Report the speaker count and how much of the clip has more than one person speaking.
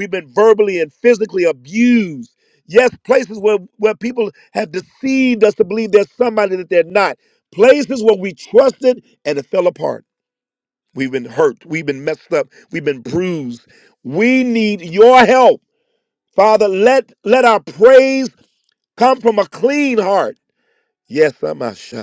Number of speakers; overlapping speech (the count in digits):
1, no overlap